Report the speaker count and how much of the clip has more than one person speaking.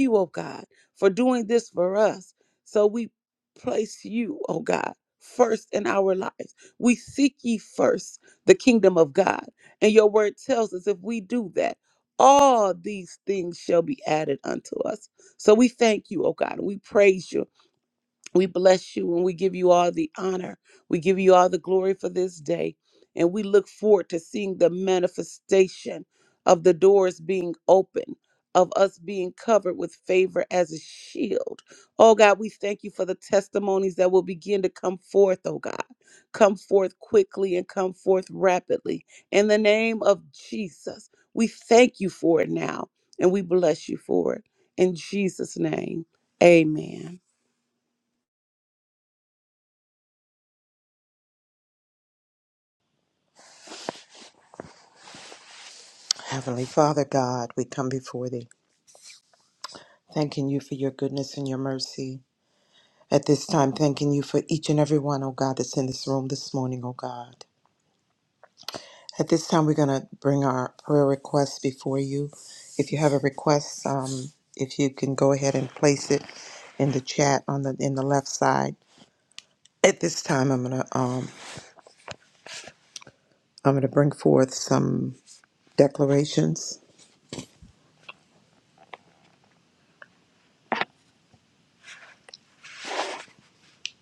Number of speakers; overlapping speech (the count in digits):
2, no overlap